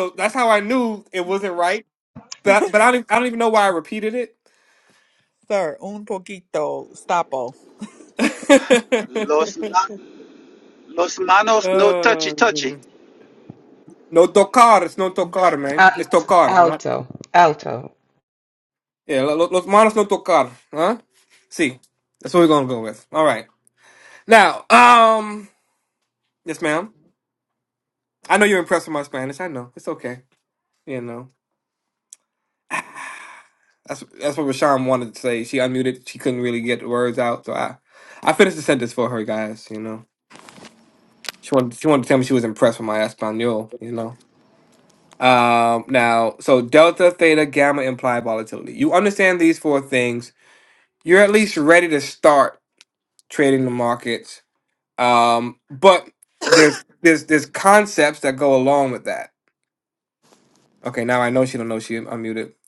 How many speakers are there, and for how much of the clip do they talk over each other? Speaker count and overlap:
four, about 4%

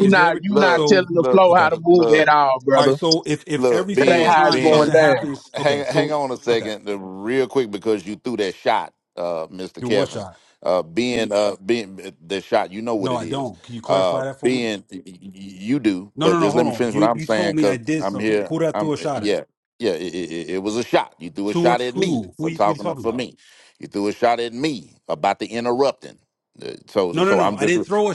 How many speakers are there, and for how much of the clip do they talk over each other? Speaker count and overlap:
three, about 43%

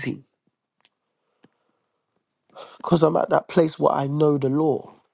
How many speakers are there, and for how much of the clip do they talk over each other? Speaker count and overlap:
one, no overlap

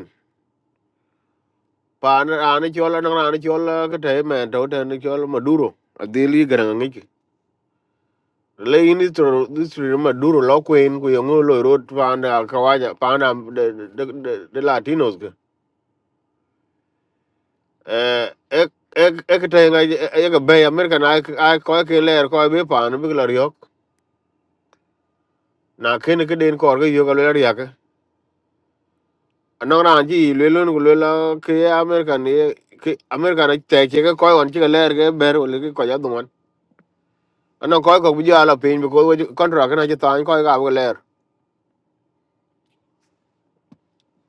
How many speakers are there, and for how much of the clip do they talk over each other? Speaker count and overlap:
one, no overlap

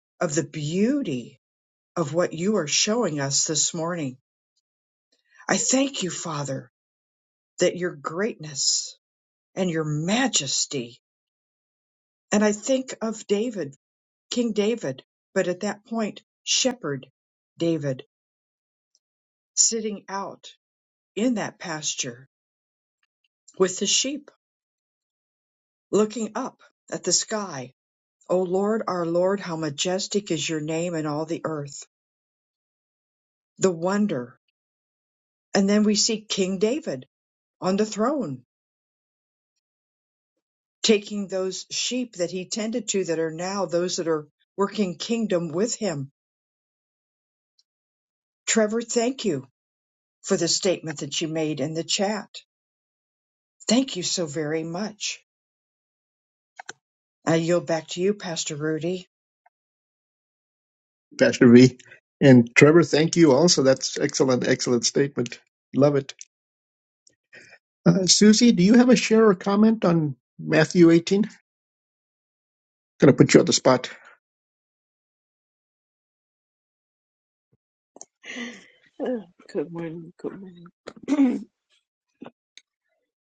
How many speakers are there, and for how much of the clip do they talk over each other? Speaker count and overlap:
three, no overlap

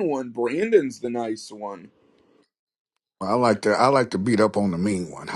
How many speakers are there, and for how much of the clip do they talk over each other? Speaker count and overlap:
two, no overlap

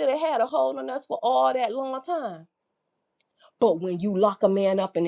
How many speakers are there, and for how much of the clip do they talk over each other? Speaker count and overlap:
one, no overlap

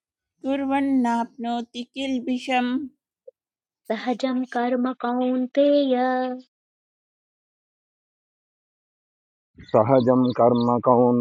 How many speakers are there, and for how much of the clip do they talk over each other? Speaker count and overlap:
three, no overlap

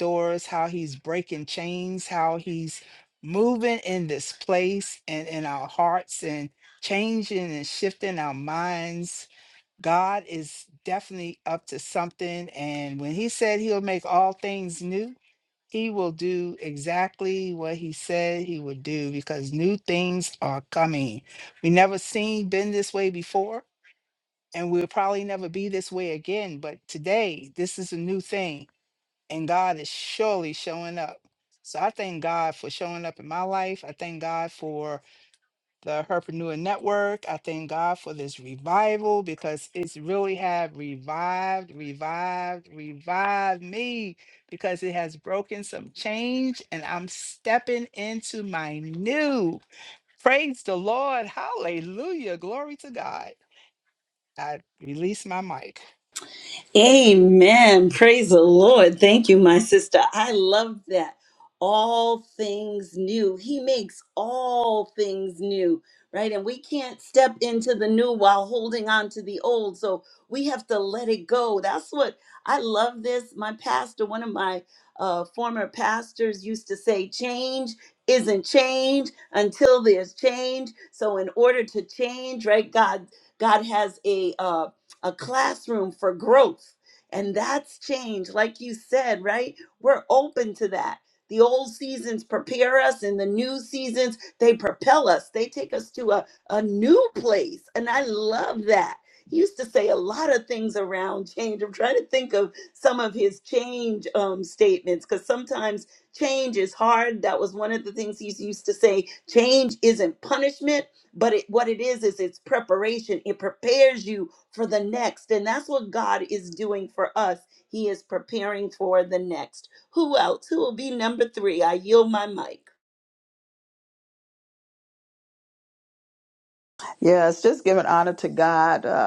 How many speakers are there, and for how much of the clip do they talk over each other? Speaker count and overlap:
three, no overlap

